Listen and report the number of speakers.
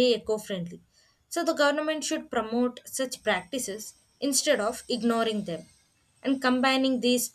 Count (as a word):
one